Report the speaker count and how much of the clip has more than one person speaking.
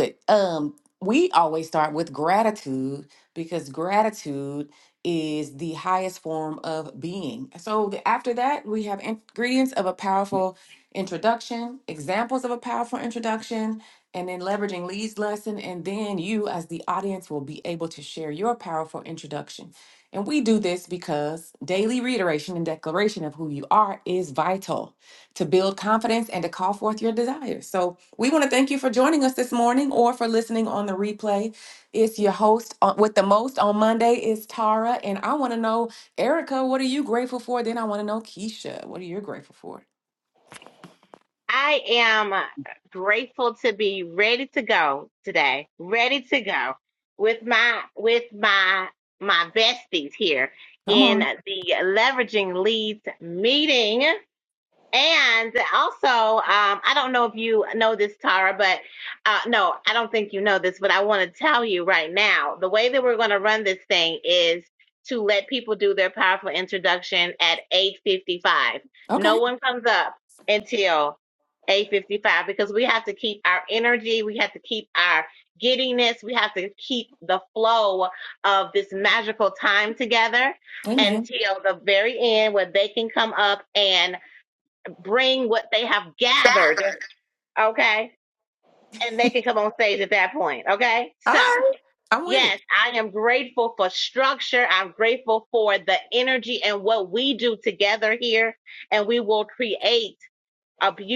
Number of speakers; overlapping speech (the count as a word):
two, about 1%